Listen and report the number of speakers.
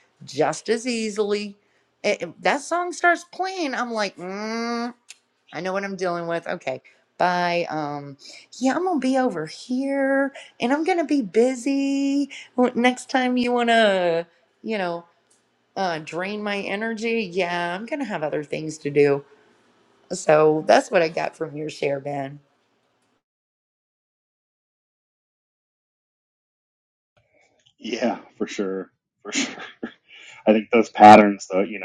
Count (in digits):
2